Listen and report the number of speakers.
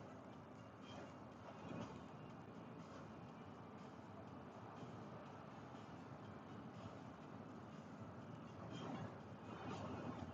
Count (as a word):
zero